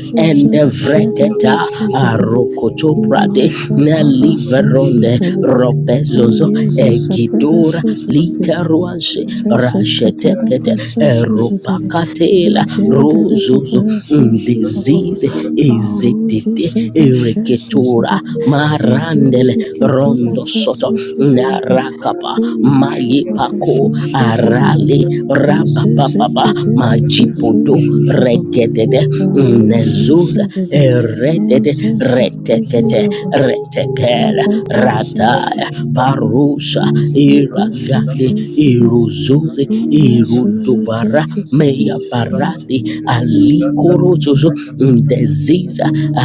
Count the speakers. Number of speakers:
2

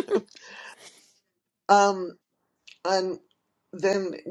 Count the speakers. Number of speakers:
1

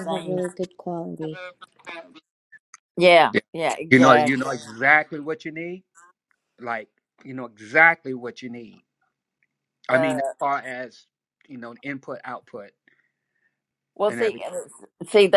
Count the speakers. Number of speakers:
3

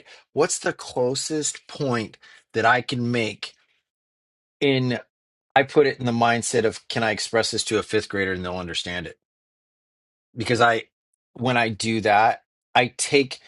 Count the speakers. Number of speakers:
1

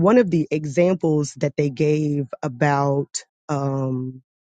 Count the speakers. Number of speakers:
1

